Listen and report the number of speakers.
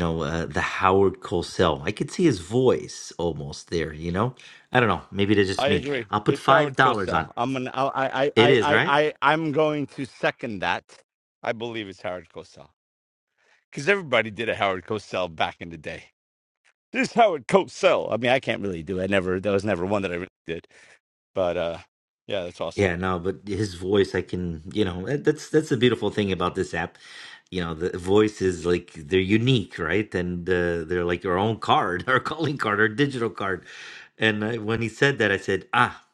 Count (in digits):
2